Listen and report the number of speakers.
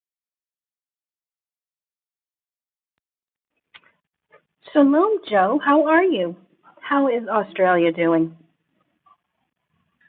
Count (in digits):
1